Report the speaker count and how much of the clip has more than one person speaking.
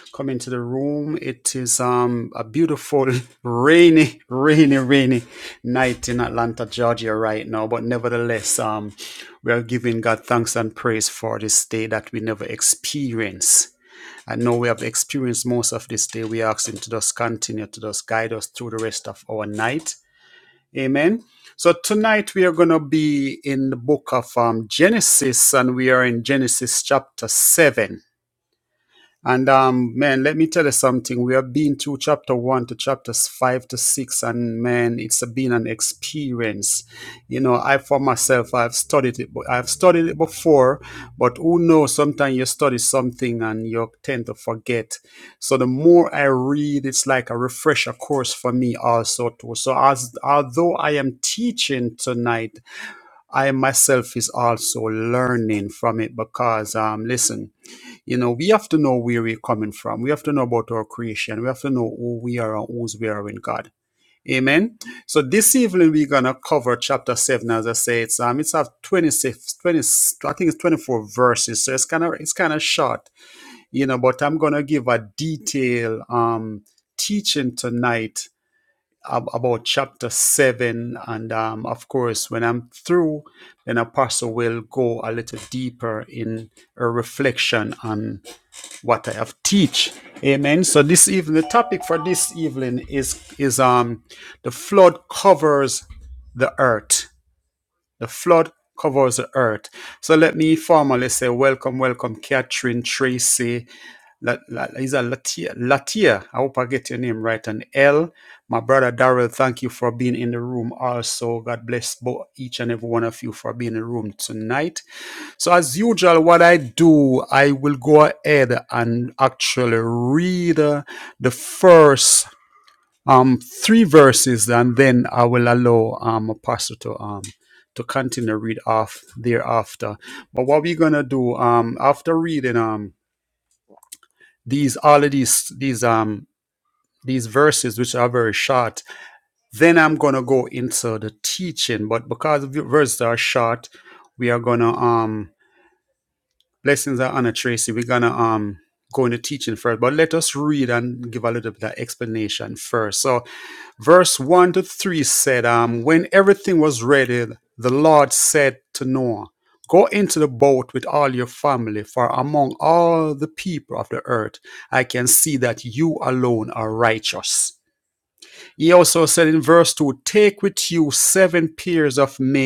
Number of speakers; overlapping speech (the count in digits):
1, no overlap